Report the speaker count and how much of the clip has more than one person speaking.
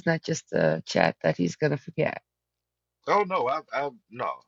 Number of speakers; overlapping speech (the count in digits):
2, no overlap